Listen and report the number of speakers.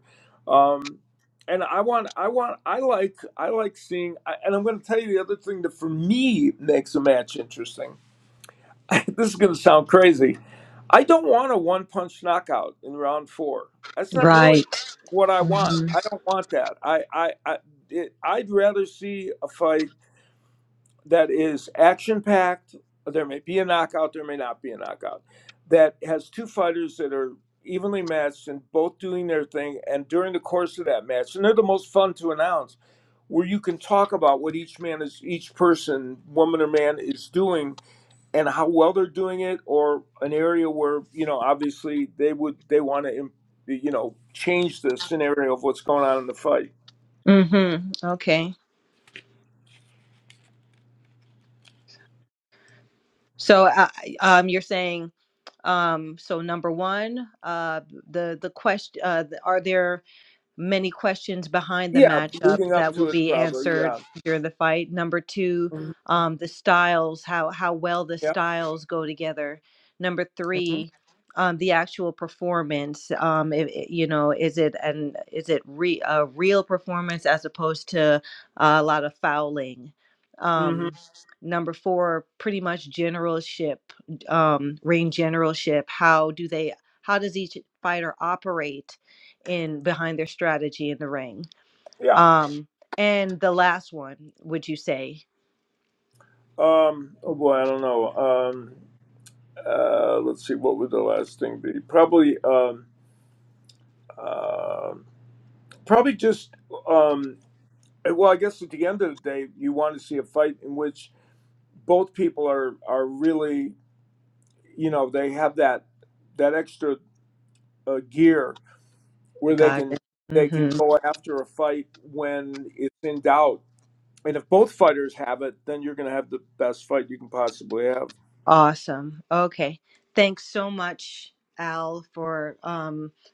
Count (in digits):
2